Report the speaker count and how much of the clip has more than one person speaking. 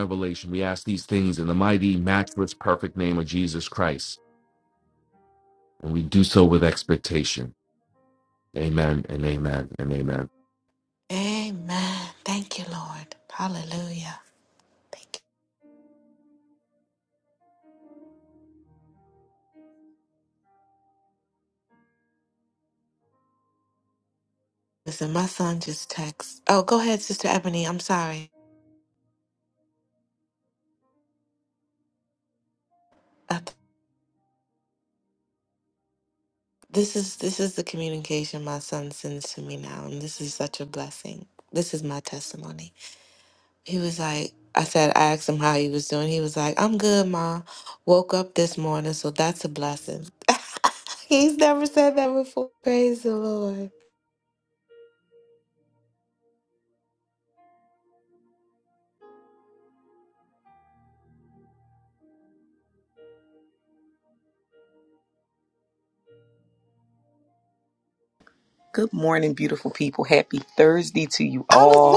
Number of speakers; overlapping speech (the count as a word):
three, about 1%